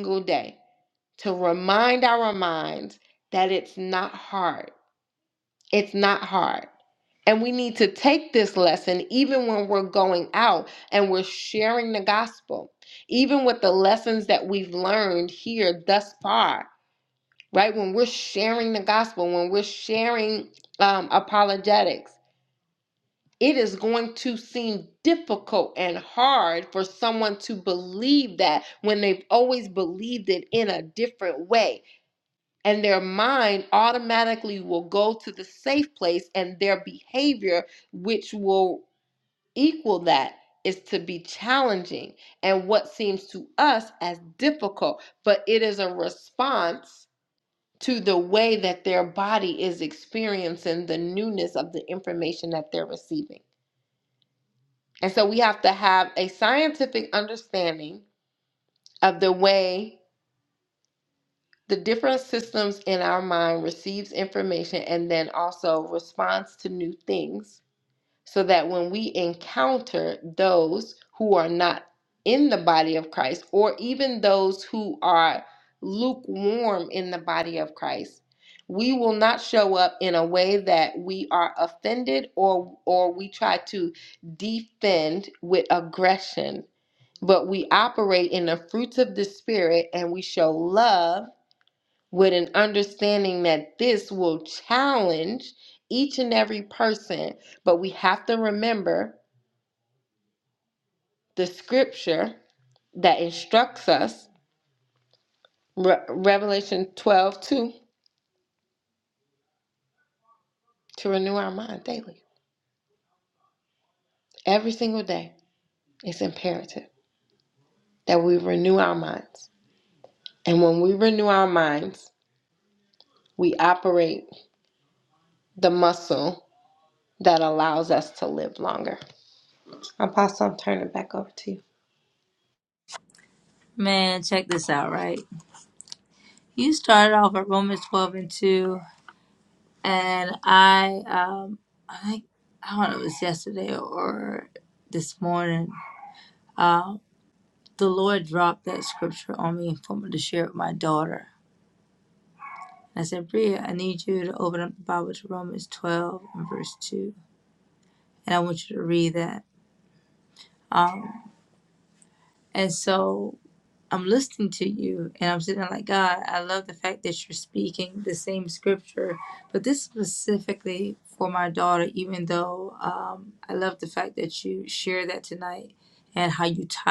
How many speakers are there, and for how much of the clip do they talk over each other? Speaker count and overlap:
2, no overlap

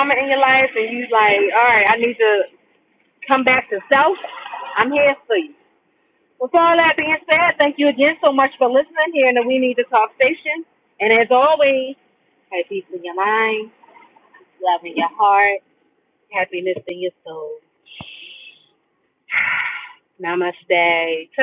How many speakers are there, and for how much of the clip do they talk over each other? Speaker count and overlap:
1, no overlap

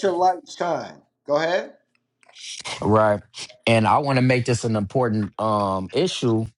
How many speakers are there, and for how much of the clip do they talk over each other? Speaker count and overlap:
2, no overlap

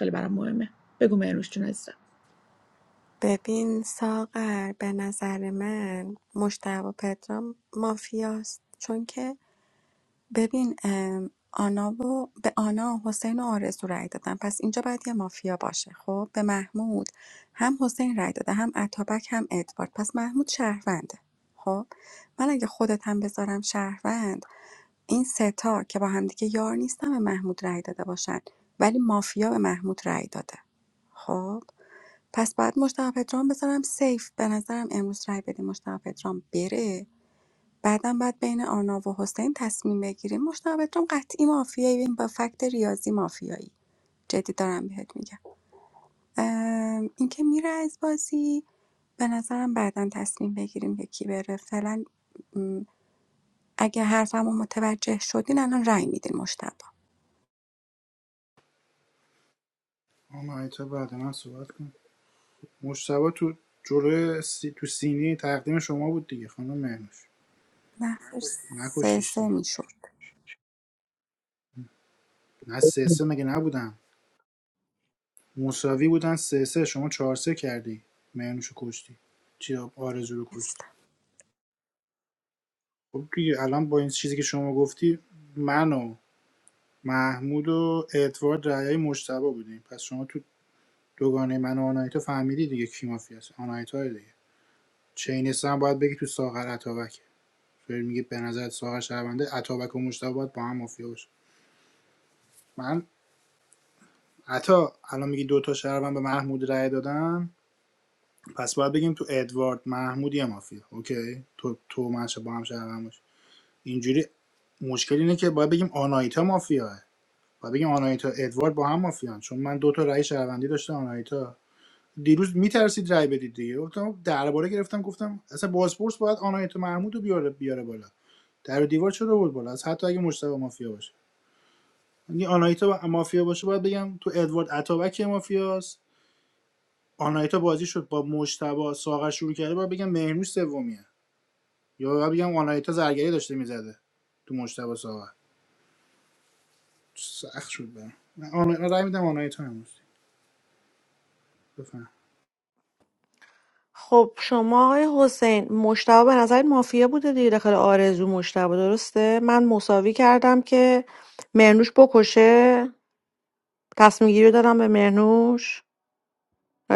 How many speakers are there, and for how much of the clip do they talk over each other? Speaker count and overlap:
4, under 1%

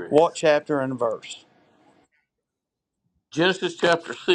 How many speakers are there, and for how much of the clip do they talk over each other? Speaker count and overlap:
2, under 1%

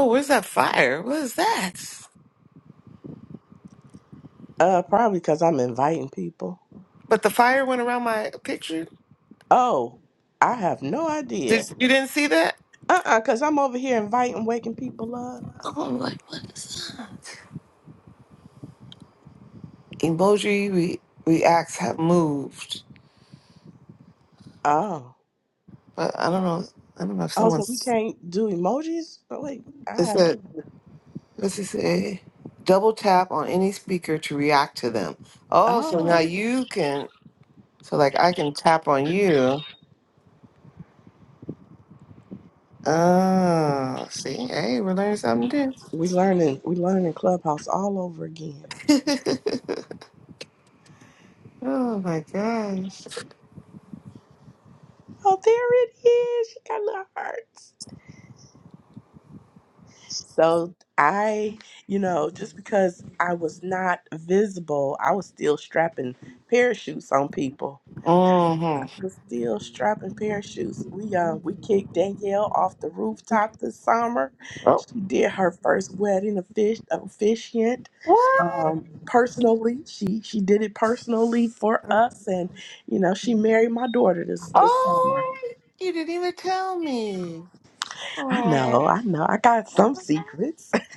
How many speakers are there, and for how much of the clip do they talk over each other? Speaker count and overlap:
2, about 4%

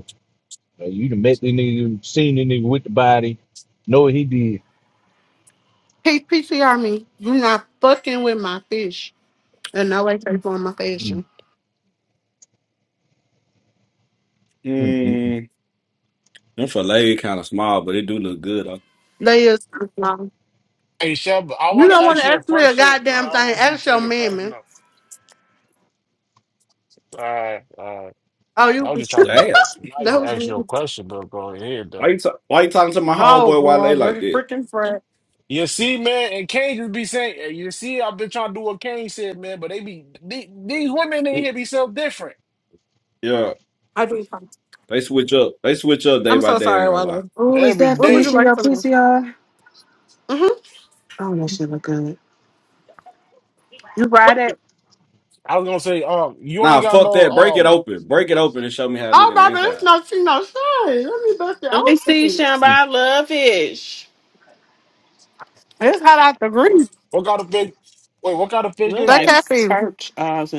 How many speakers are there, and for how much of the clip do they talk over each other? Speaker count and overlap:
5, about 16%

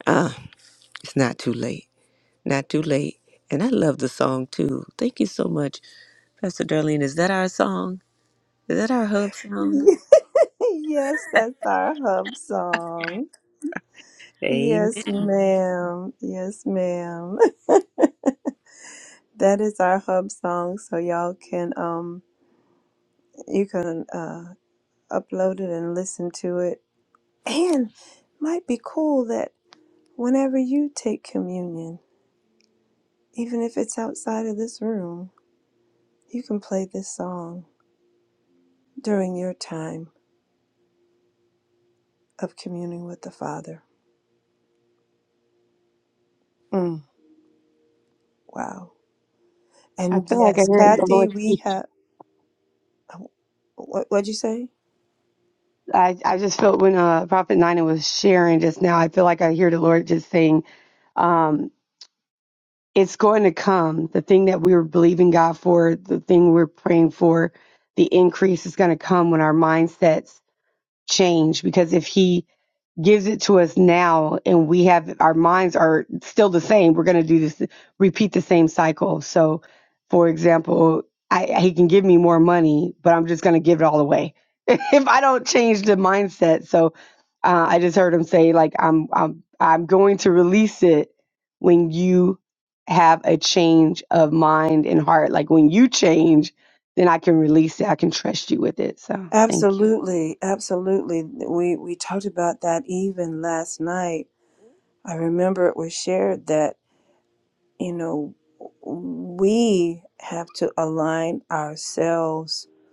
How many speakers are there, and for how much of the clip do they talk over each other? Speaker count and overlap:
3, about 2%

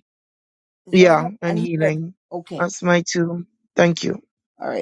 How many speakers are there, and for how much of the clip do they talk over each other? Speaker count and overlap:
2, about 21%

